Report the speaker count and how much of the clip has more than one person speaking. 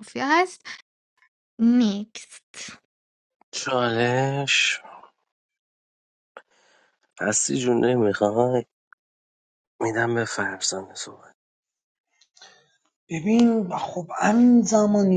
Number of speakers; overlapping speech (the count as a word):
three, no overlap